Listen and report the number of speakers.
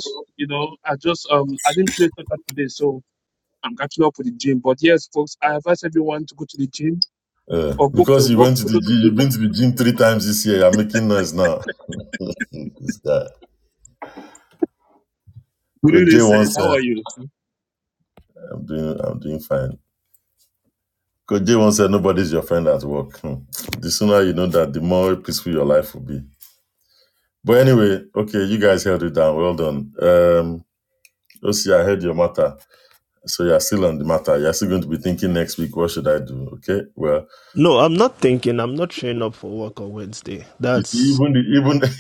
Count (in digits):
3